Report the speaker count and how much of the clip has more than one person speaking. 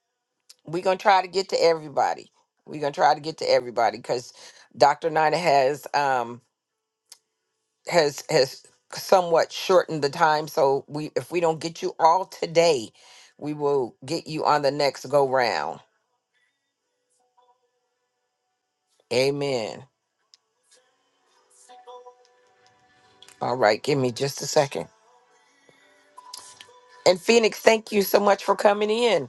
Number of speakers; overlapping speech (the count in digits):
1, no overlap